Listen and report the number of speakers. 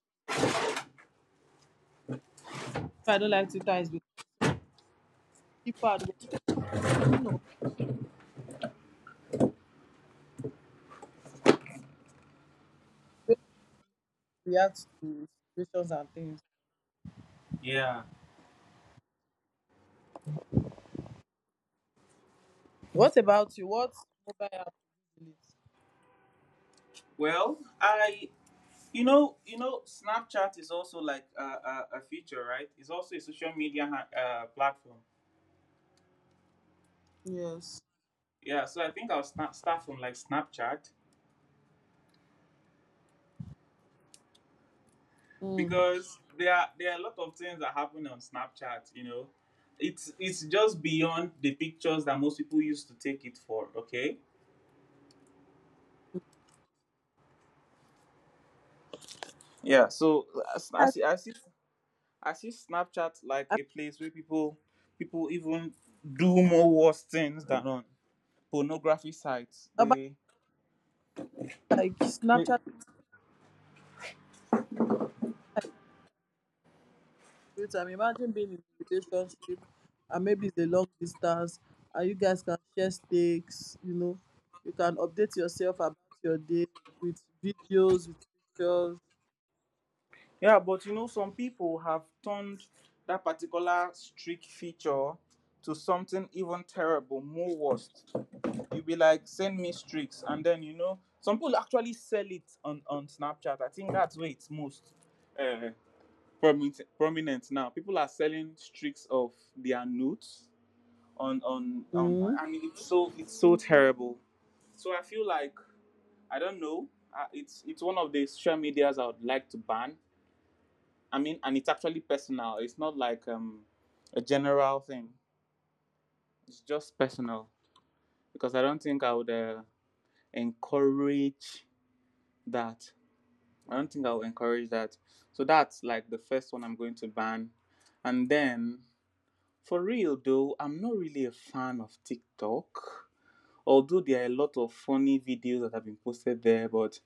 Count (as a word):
two